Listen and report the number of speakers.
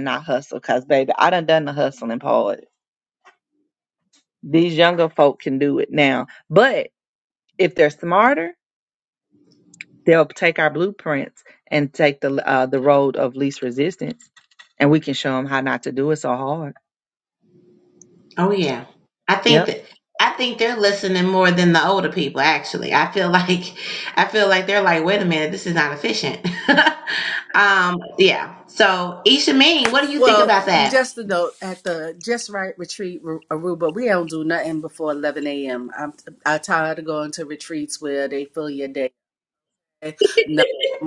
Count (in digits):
3